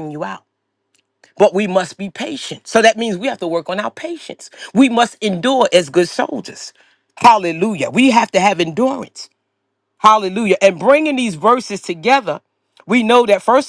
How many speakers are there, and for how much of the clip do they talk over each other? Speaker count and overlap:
1, no overlap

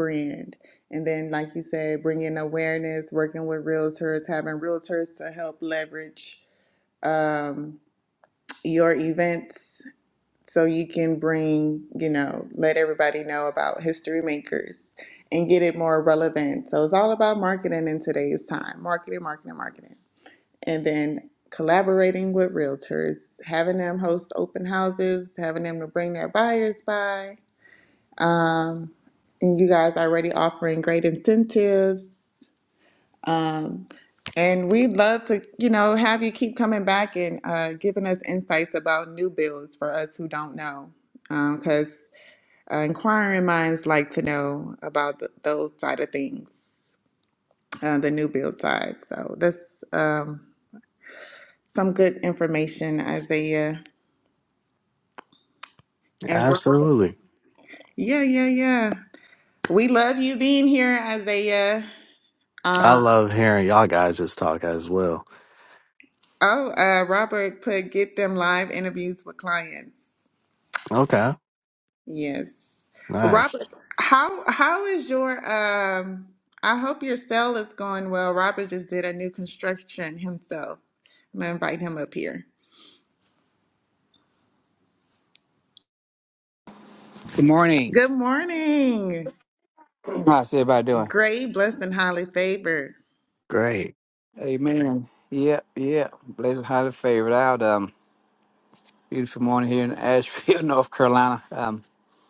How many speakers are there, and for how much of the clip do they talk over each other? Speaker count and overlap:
3, about 1%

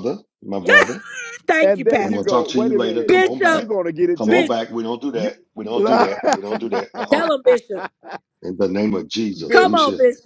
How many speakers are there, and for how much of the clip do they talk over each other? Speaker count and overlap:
3, about 39%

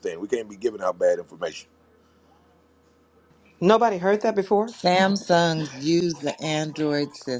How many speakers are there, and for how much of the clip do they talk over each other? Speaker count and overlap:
3, no overlap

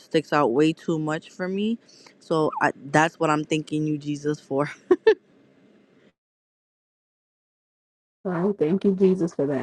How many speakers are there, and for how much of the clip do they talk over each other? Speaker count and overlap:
2, no overlap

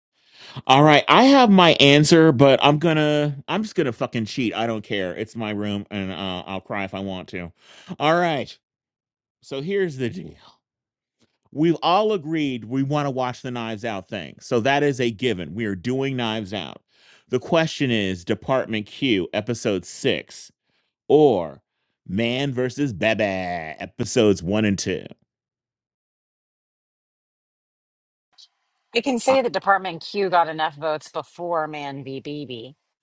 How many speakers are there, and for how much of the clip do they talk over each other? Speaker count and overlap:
2, under 1%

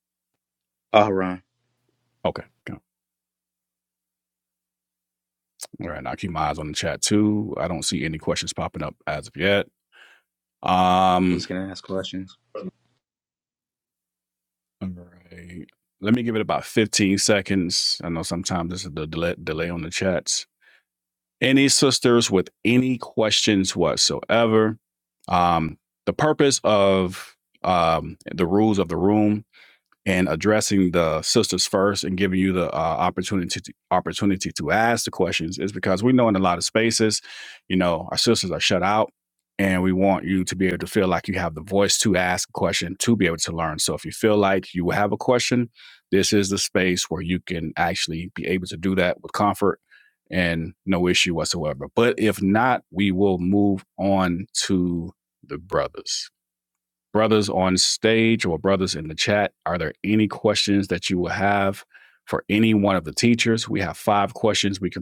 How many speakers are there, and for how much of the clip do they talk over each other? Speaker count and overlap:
2, under 1%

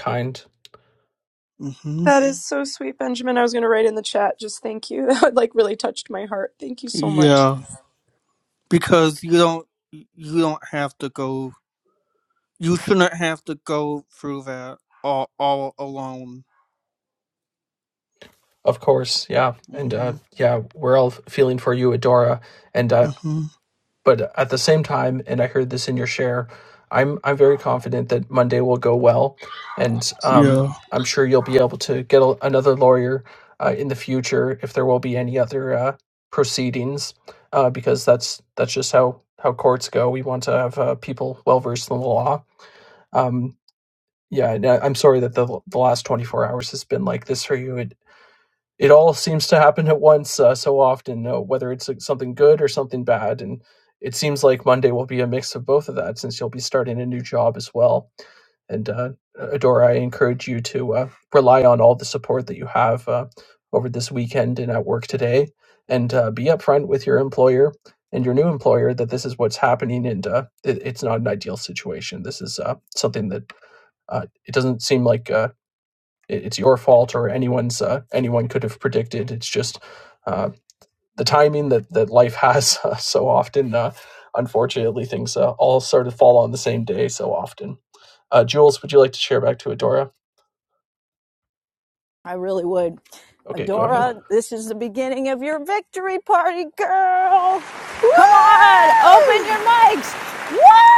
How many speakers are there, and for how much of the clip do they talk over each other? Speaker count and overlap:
4, about 3%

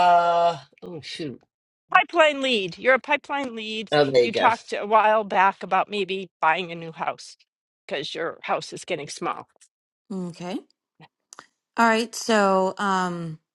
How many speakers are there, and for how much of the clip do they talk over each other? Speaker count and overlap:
3, about 2%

